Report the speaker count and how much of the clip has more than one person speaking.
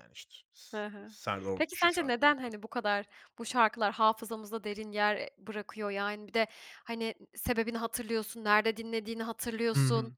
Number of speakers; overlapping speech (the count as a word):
two, about 13%